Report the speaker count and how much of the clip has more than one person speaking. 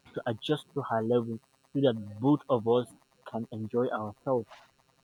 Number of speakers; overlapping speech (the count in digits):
1, no overlap